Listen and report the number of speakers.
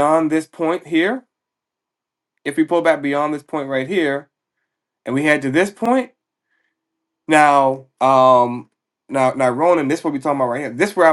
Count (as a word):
one